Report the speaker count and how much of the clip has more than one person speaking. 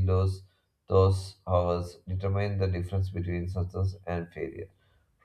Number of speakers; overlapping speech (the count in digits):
1, no overlap